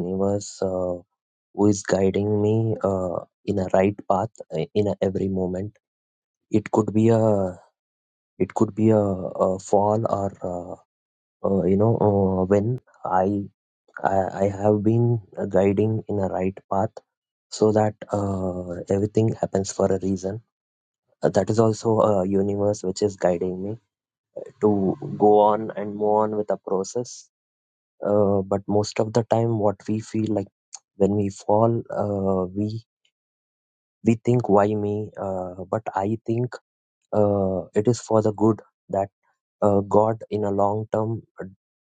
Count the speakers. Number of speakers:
1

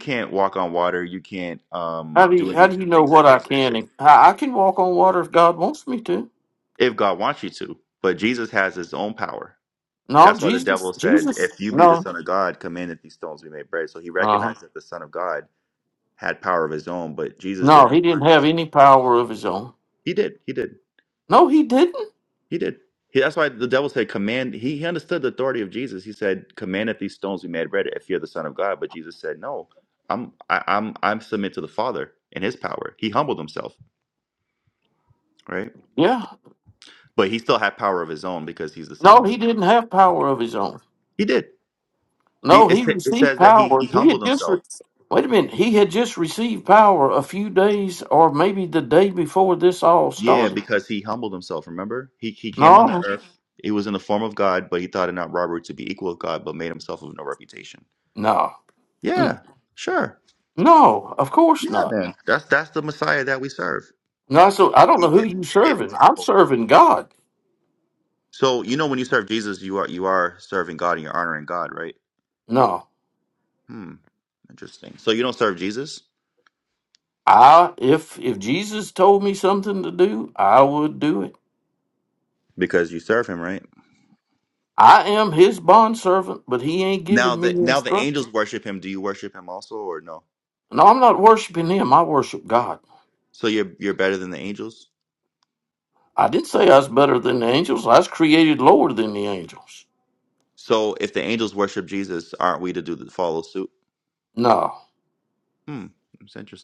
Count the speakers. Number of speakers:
2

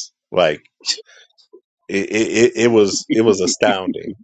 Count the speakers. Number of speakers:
1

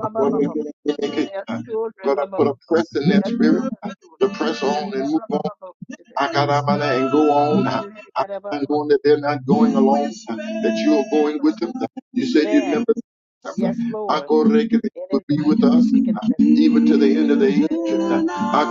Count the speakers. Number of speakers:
2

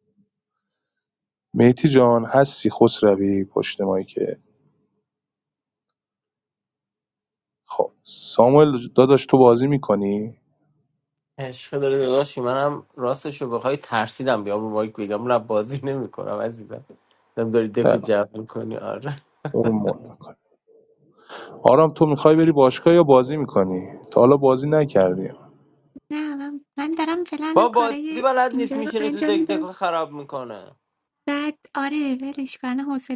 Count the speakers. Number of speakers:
3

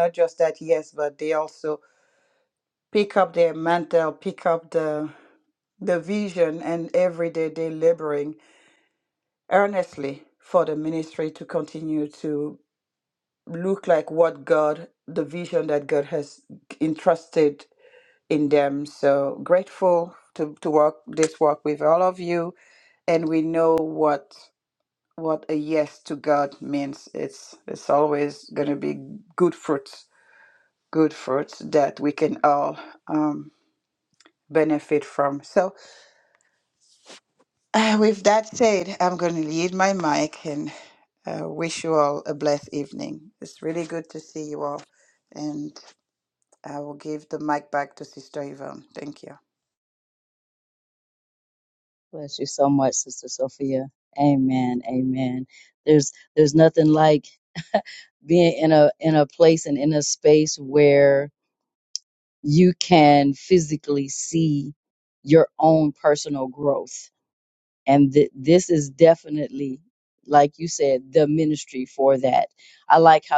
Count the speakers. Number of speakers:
2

